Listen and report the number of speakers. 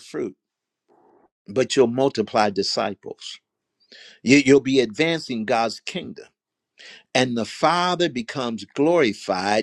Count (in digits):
1